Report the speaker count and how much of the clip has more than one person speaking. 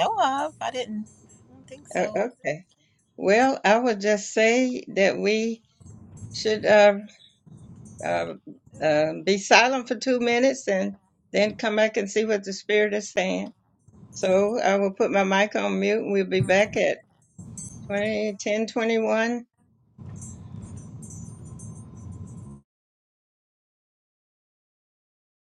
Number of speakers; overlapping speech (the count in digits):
2, about 1%